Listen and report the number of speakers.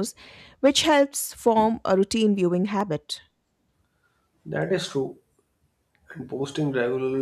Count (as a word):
two